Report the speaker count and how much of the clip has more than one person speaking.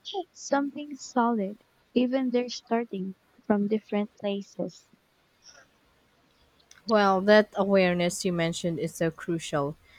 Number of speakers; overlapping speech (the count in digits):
2, no overlap